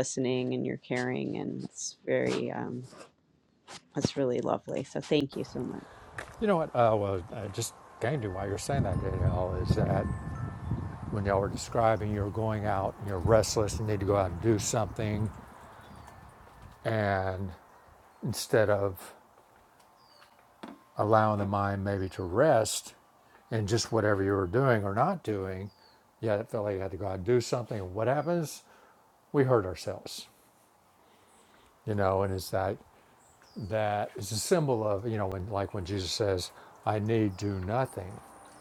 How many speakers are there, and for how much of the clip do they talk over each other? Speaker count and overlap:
two, no overlap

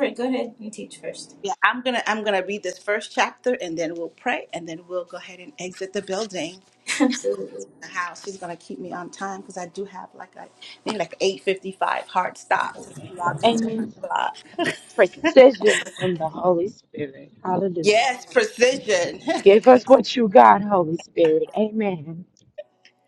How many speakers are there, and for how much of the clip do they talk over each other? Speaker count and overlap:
three, about 3%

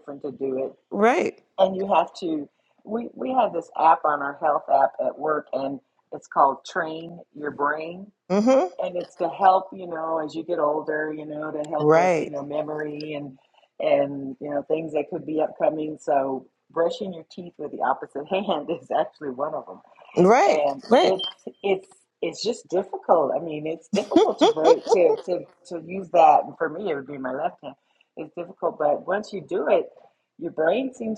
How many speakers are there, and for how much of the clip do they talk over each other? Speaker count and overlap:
two, about 4%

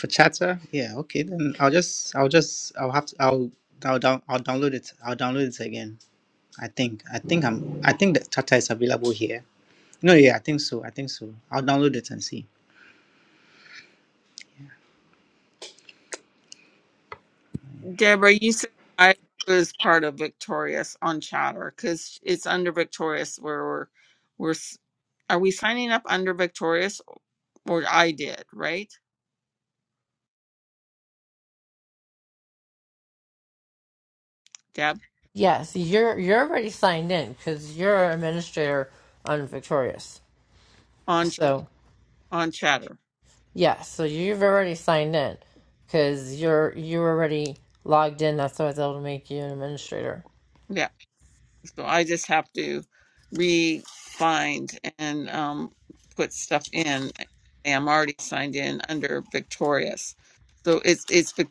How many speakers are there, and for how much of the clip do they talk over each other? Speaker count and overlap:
three, under 1%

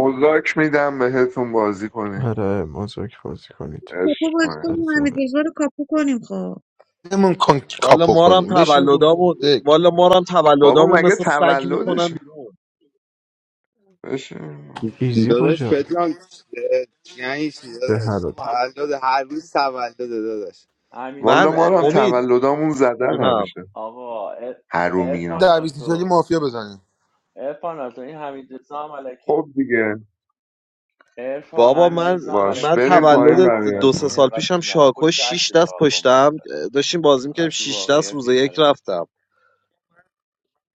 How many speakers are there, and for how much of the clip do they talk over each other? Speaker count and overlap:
seven, about 34%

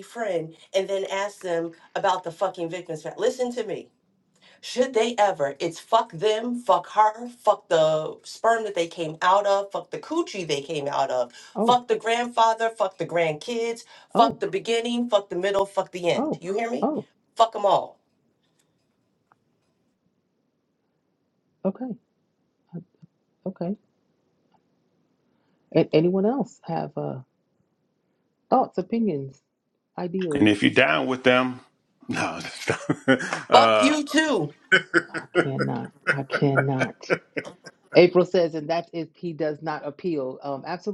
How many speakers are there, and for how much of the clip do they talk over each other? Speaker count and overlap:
three, about 3%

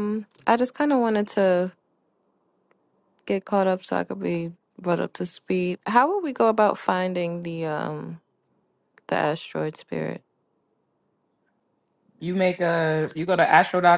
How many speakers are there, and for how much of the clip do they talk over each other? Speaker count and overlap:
two, no overlap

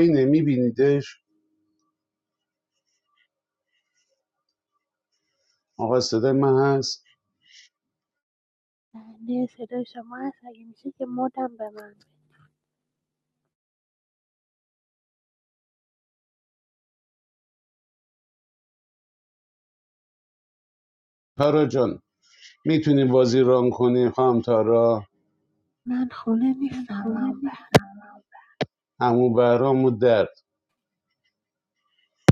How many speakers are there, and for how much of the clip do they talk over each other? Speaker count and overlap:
two, no overlap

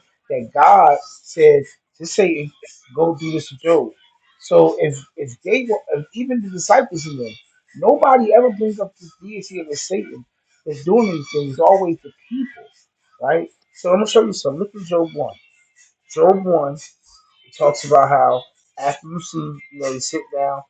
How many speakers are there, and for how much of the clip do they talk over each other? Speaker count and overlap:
one, no overlap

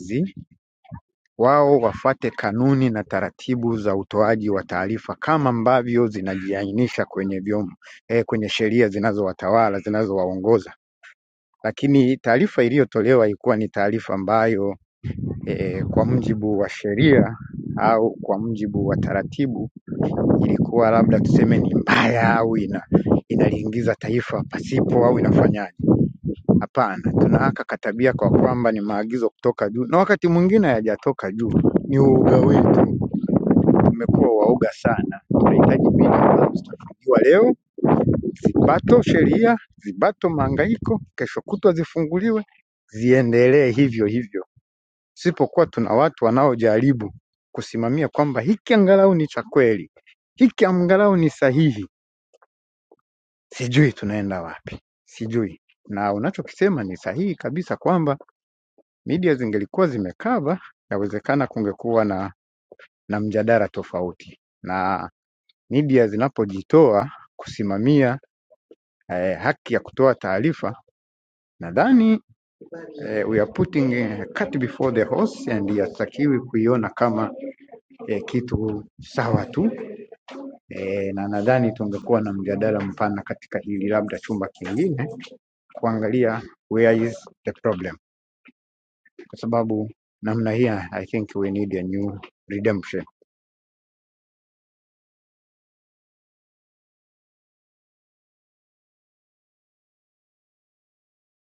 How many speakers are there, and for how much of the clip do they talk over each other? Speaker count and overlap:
one, no overlap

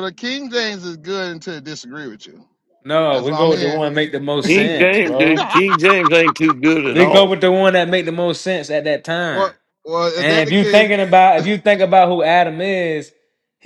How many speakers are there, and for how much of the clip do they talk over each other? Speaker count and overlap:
three, about 21%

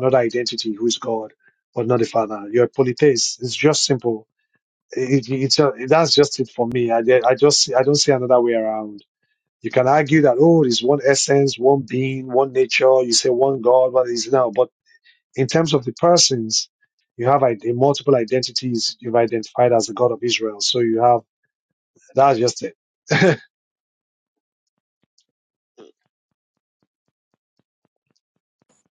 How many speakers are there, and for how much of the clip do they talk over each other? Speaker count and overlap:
one, no overlap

